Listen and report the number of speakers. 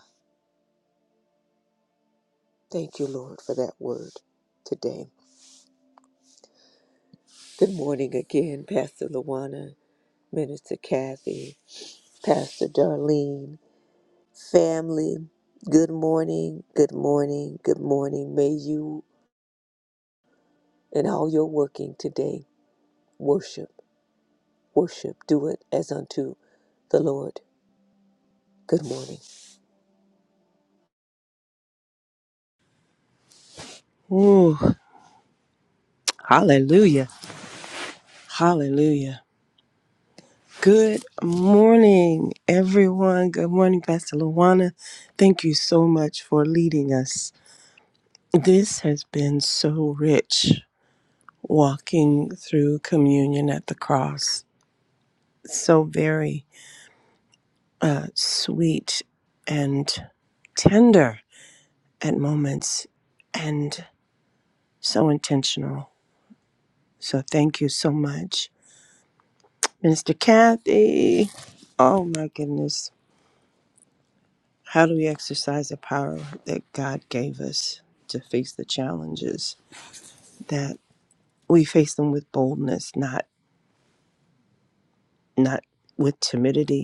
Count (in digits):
2